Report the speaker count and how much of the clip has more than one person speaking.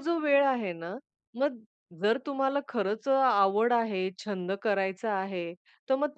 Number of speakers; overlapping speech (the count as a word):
one, no overlap